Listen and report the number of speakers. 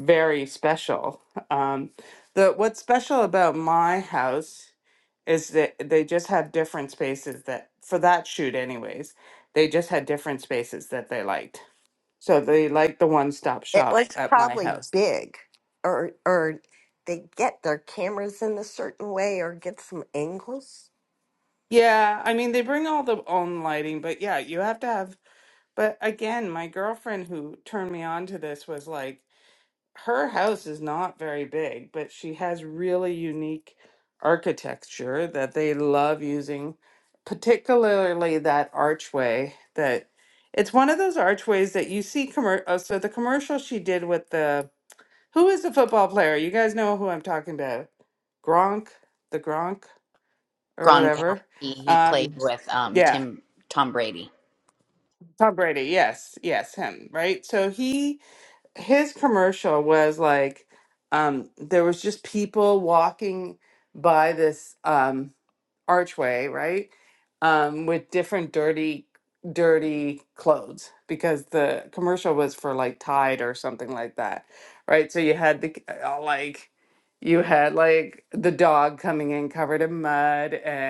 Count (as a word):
three